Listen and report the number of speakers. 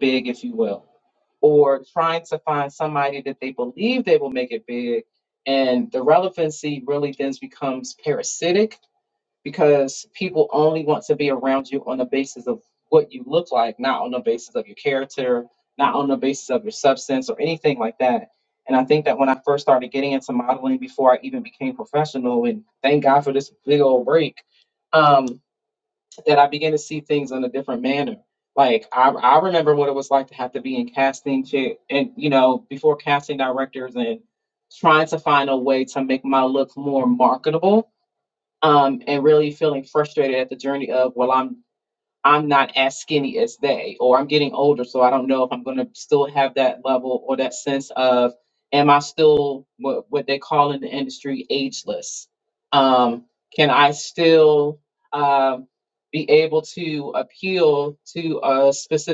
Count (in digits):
1